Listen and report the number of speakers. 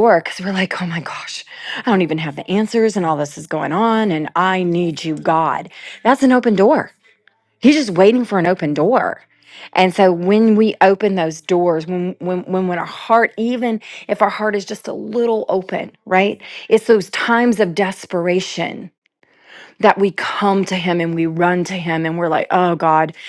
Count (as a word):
one